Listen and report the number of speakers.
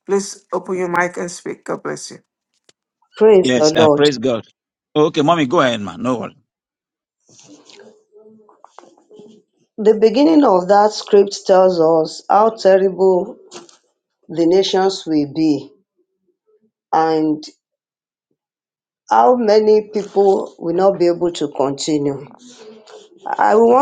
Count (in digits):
3